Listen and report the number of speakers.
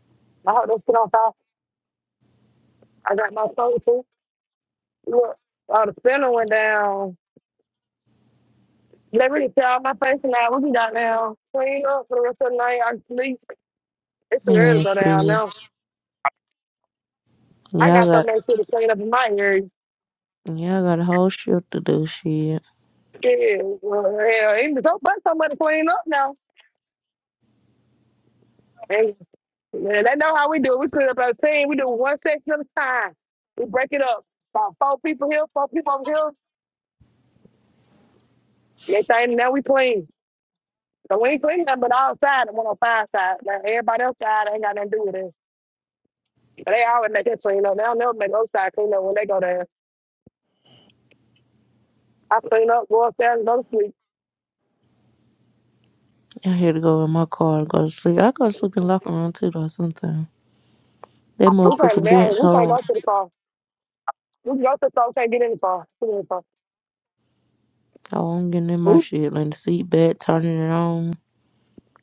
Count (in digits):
2